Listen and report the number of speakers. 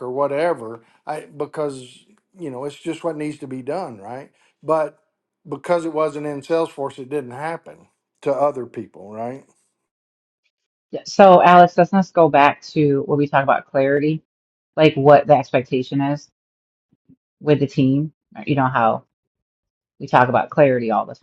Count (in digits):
2